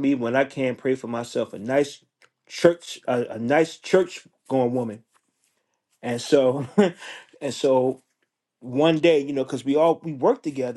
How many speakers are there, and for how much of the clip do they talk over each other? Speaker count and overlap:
1, no overlap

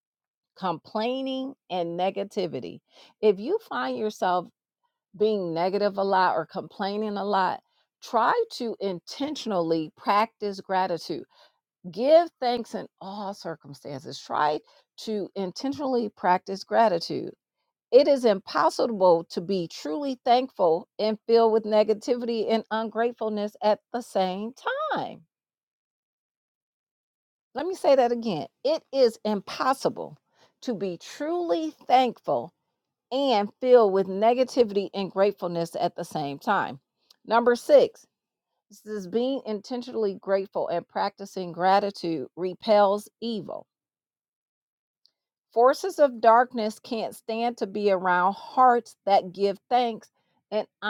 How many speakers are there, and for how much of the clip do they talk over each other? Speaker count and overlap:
1, no overlap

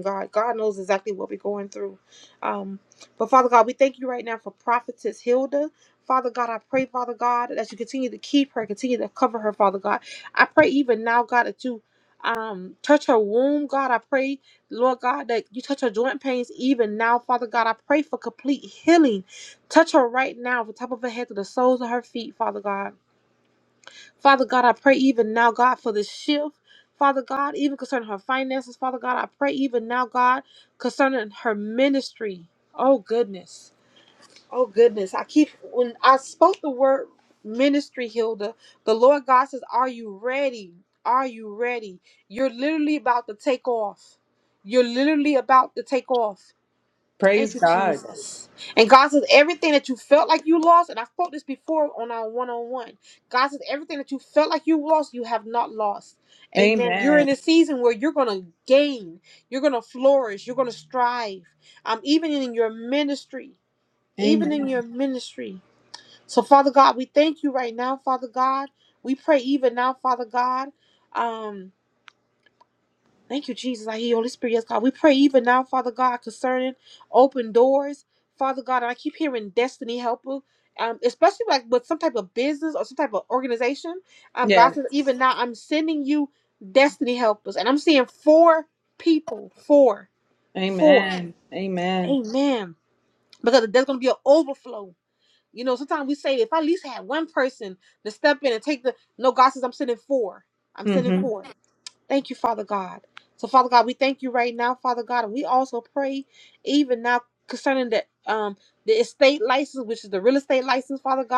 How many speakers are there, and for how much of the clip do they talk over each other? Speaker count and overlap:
2, about 3%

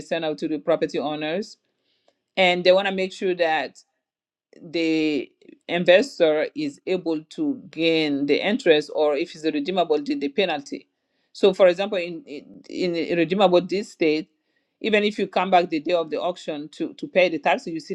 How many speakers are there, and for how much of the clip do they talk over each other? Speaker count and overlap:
1, no overlap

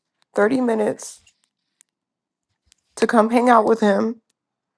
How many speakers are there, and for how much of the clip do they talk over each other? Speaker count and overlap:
1, no overlap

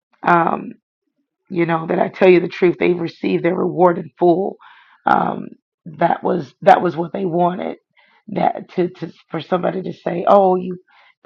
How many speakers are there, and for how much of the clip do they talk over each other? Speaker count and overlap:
1, no overlap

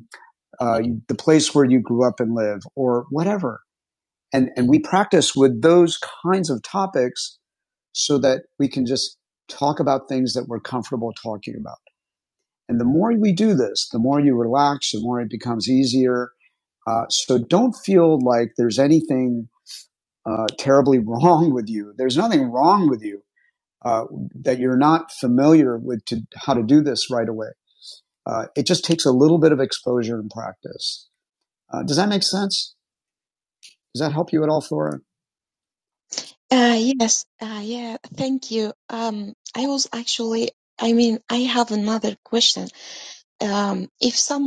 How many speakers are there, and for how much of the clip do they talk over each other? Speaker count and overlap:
2, no overlap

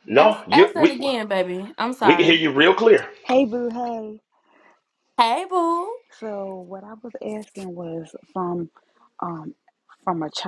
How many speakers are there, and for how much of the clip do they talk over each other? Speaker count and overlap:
3, about 11%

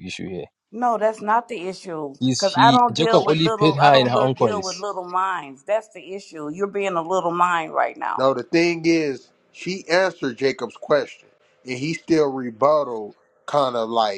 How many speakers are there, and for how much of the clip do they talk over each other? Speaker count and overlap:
3, about 19%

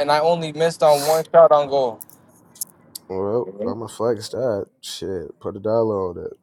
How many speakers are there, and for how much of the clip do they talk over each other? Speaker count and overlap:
2, no overlap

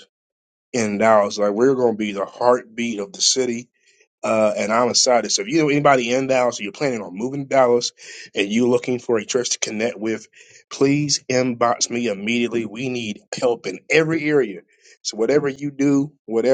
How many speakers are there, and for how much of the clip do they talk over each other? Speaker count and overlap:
1, no overlap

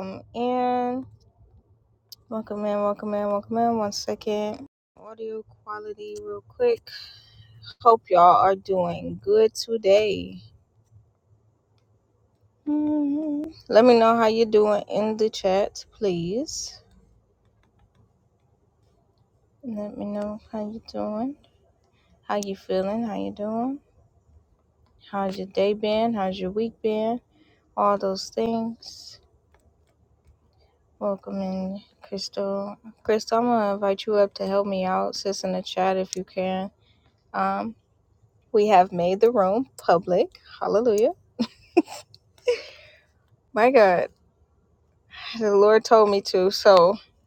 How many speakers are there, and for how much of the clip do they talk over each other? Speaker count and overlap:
1, no overlap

